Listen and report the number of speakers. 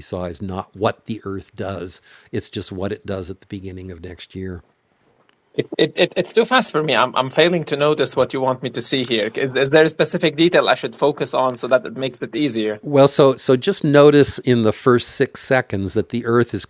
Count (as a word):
two